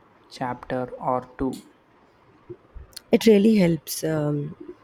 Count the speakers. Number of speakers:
two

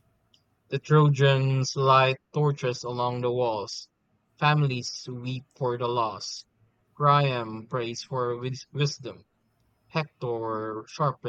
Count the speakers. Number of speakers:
one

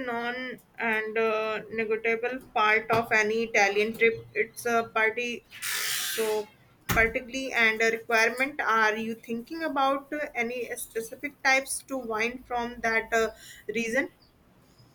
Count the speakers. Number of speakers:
one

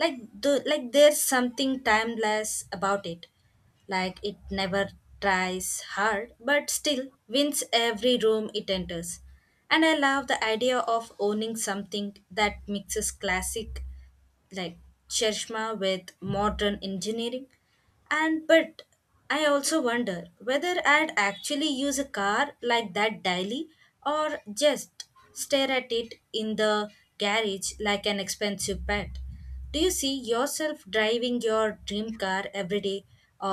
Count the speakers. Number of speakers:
one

